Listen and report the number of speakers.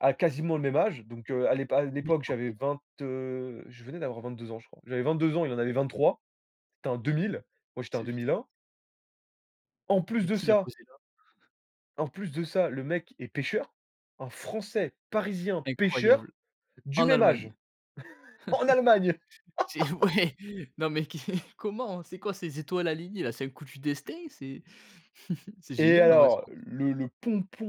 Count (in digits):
2